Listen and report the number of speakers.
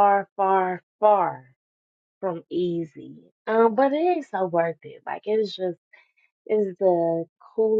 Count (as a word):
one